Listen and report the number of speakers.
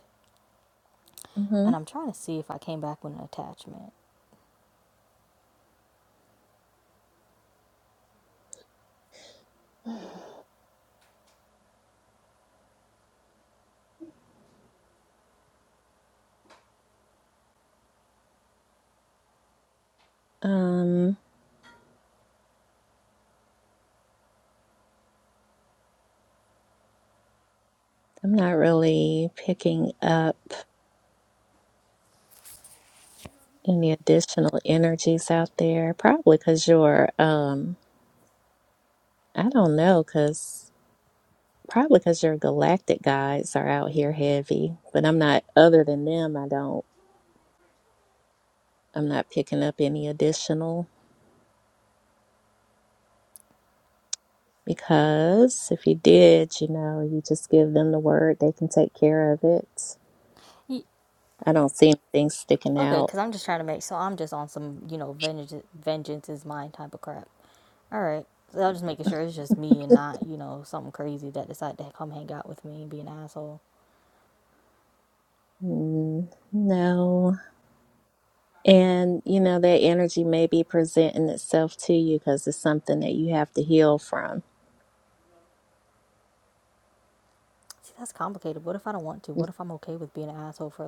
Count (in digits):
2